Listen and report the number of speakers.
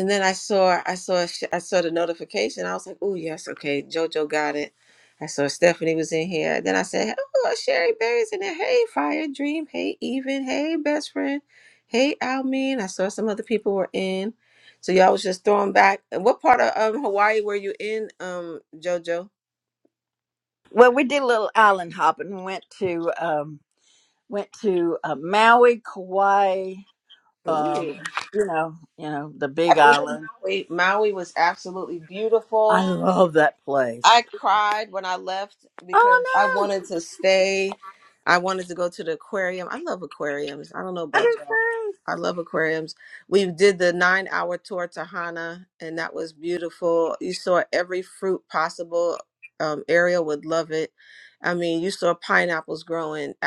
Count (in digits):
2